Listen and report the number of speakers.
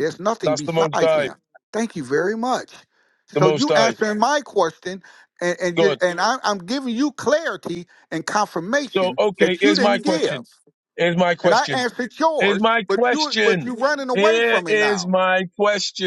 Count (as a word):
two